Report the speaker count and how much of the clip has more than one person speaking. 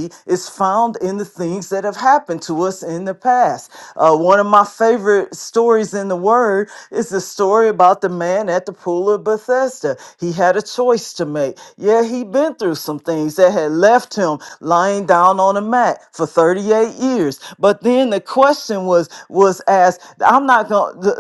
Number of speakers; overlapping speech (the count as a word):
one, no overlap